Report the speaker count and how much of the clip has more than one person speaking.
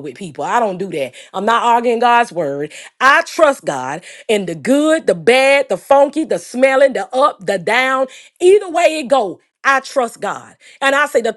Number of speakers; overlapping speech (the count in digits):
1, no overlap